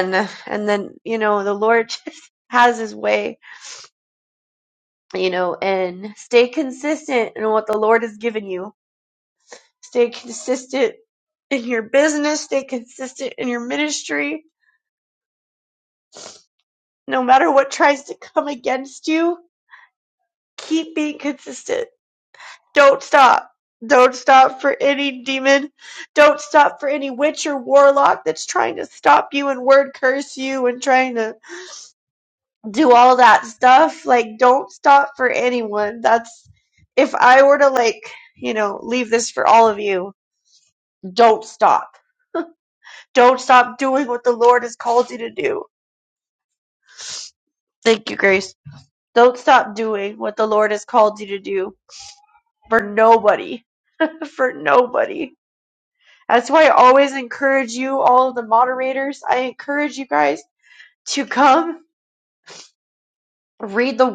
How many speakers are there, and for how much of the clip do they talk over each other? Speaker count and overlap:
1, no overlap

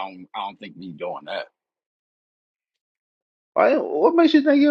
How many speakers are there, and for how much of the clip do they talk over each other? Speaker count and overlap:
2, no overlap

